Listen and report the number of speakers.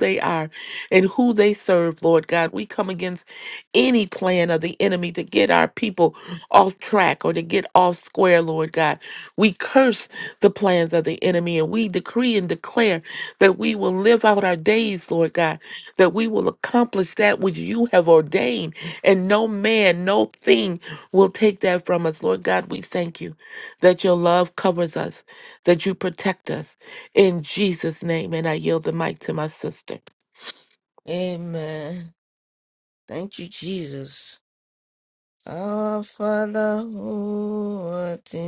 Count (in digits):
2